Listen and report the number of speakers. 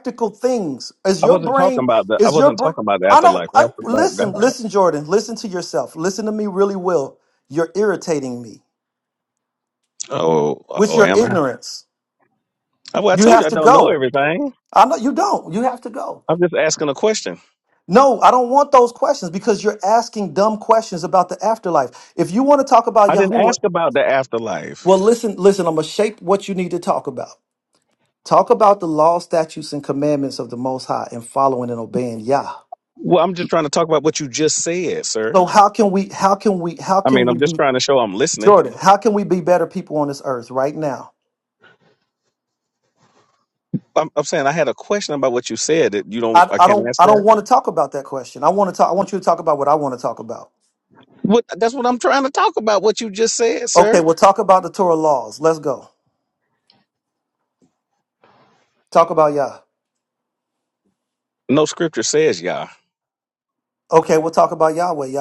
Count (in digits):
2